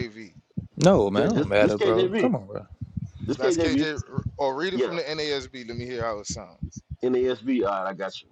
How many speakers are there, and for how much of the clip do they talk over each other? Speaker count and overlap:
three, about 23%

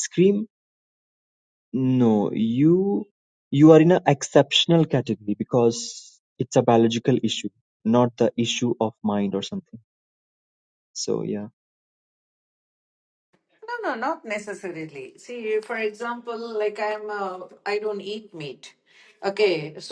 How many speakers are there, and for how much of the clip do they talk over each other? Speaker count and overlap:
two, no overlap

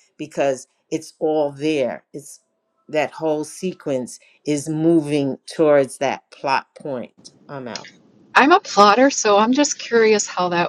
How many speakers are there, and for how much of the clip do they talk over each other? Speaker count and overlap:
two, no overlap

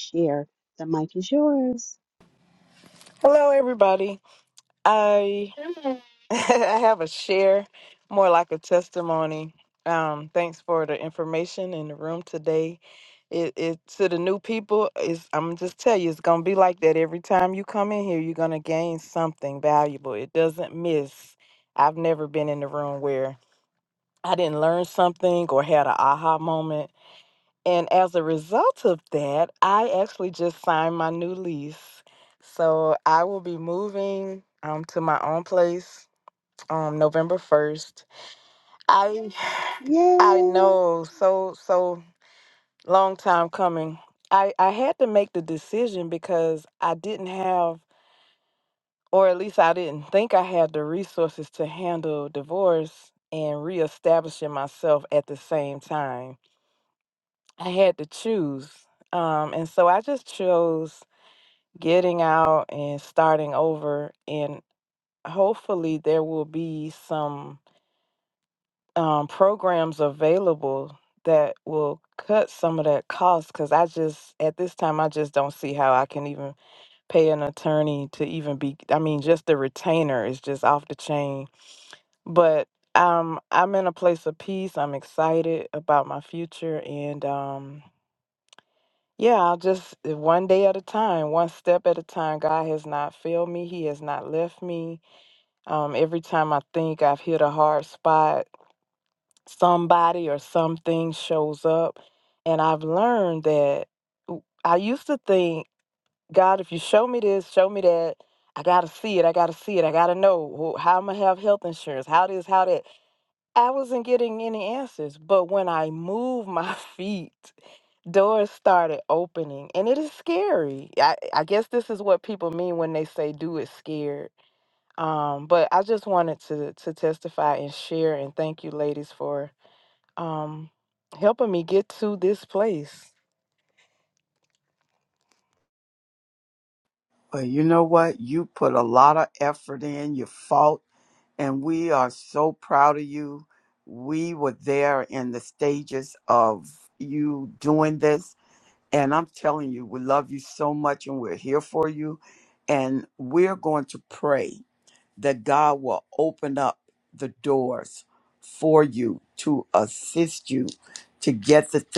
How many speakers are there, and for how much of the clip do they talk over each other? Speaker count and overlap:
three, under 1%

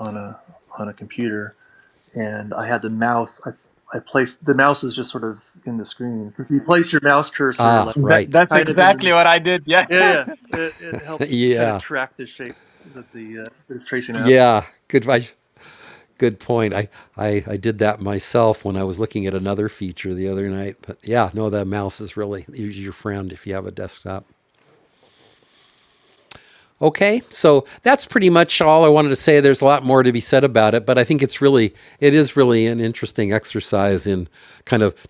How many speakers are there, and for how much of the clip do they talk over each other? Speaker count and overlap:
three, about 5%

